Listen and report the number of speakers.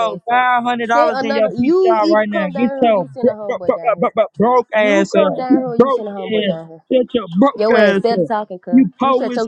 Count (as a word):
two